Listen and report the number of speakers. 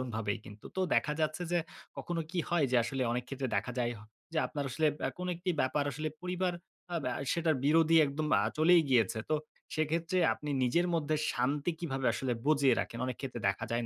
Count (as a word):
one